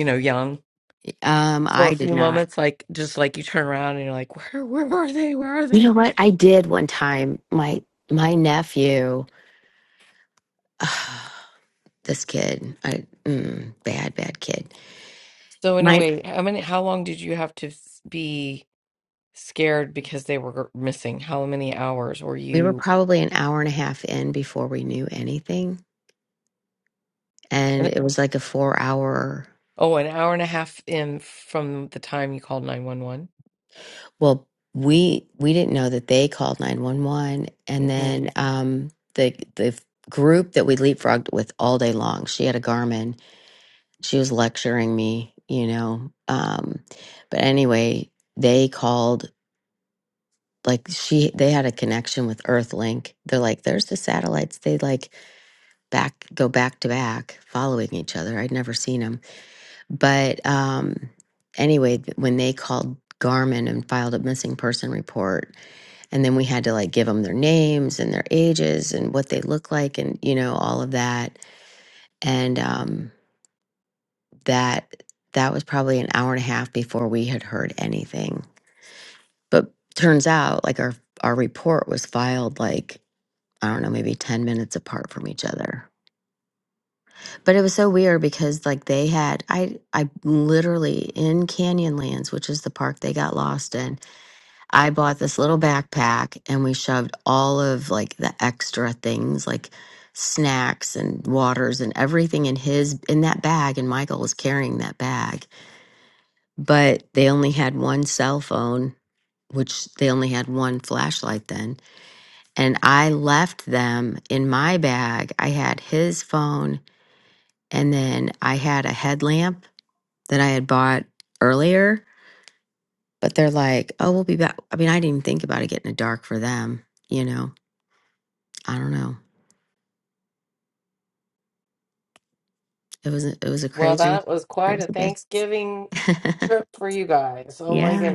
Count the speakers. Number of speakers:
two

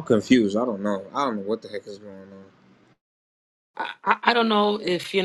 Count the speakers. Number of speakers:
two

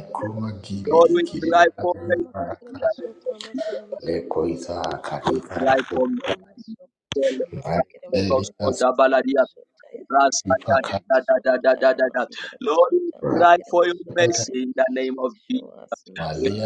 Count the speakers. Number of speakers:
three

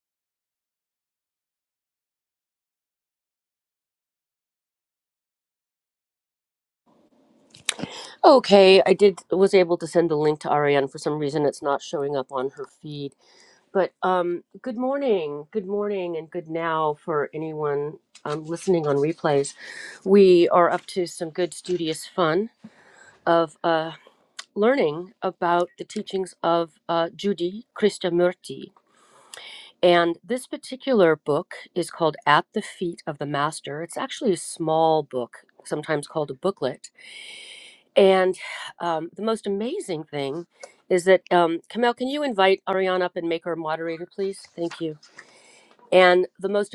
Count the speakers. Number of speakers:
one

